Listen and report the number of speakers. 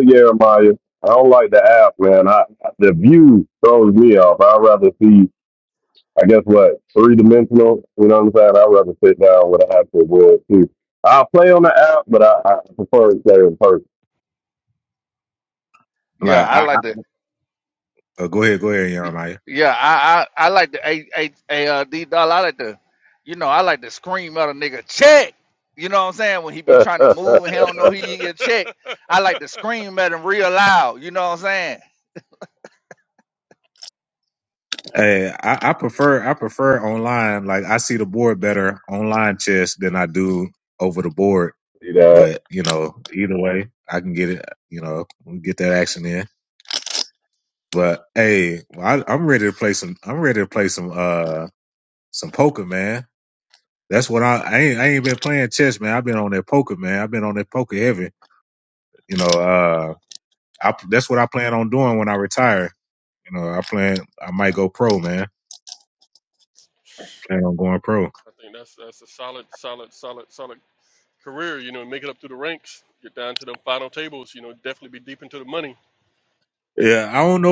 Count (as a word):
four